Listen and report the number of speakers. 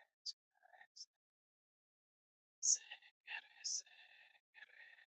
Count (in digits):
0